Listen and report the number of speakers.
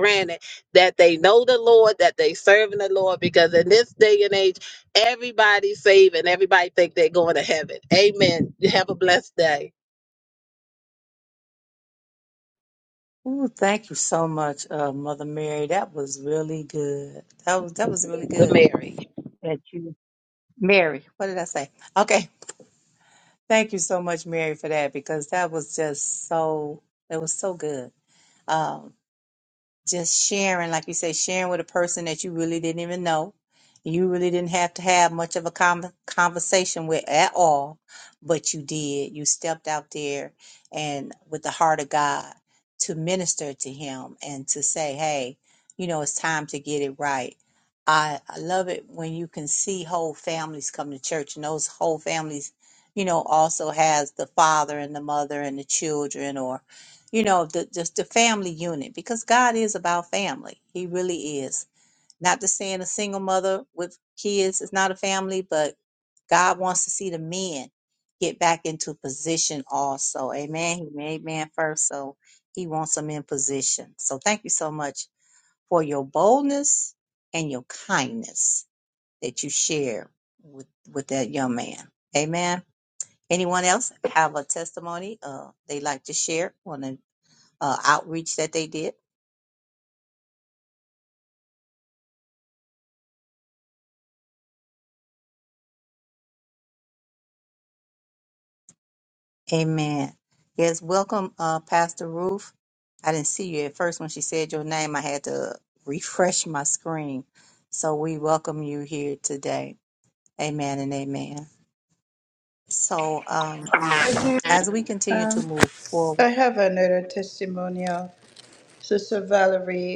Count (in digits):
3